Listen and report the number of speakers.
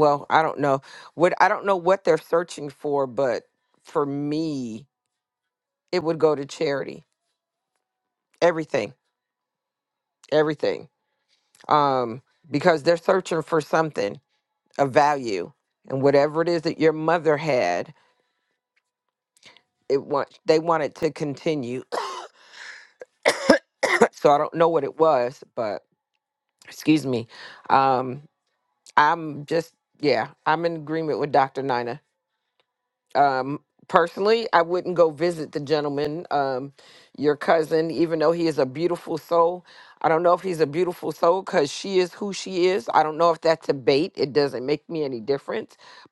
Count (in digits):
1